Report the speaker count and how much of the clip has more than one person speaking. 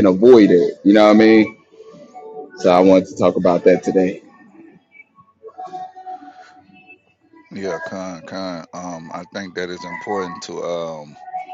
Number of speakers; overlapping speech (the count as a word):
two, no overlap